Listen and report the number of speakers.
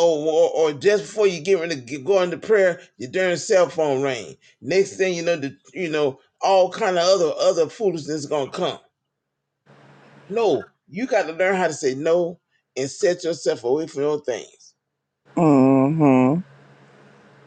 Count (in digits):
2